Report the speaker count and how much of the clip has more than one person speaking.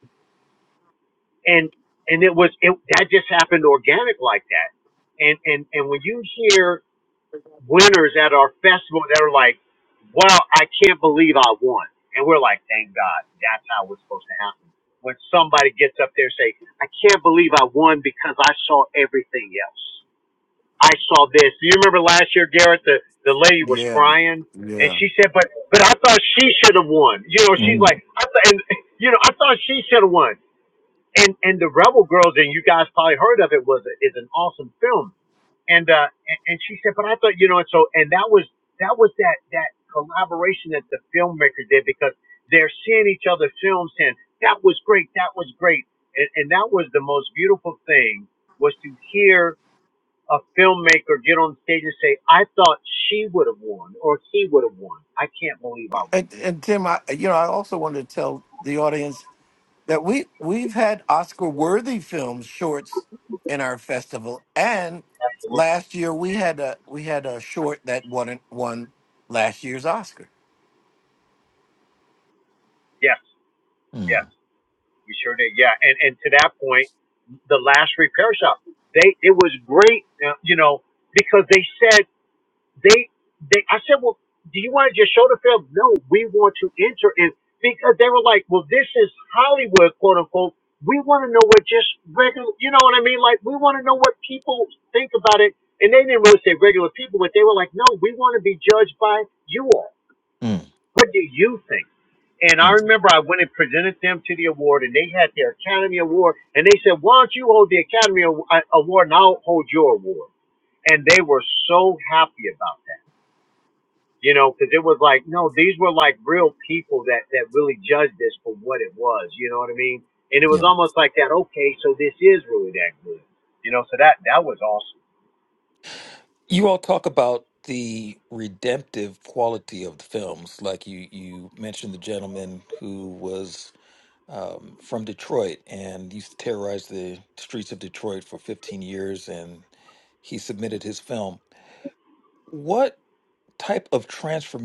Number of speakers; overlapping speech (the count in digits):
3, about 1%